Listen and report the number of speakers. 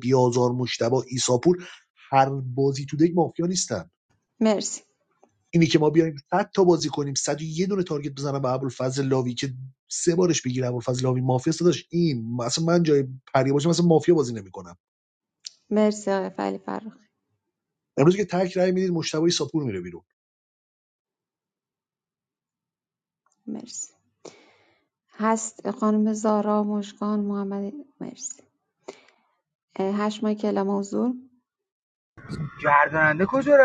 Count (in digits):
3